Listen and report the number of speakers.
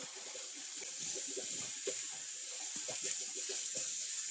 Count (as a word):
zero